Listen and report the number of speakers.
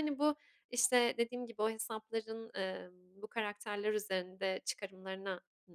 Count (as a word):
one